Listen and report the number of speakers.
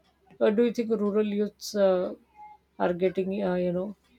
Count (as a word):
one